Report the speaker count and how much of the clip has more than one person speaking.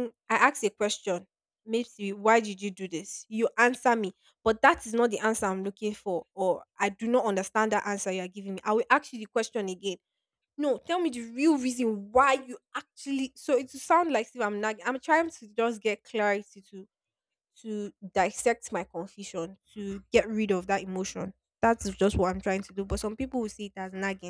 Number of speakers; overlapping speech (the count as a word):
one, no overlap